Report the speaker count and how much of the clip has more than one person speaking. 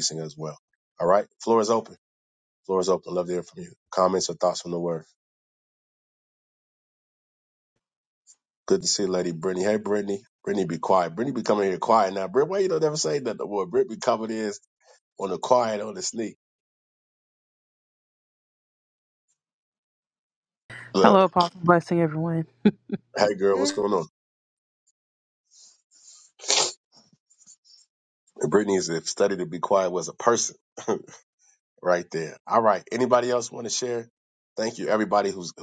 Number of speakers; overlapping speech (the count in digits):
2, about 1%